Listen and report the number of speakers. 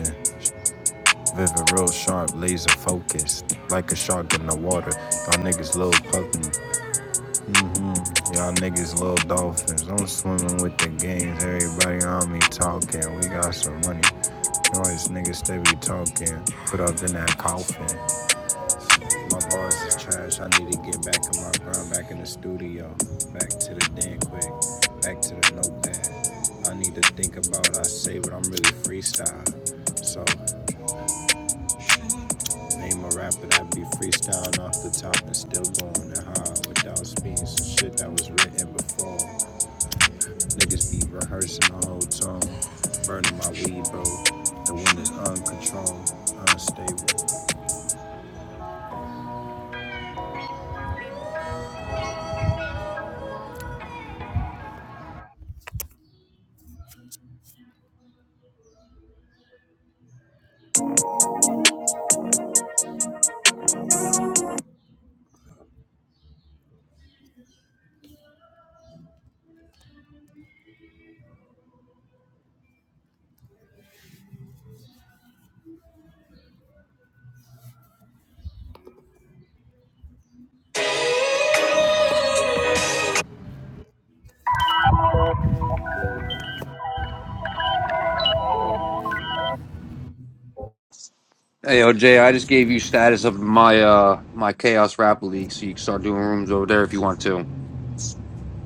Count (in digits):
2